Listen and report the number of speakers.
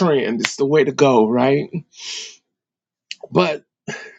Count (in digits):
1